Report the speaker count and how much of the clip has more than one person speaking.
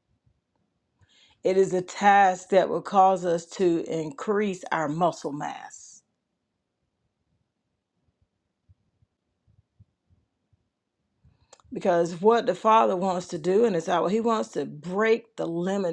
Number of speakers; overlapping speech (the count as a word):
one, no overlap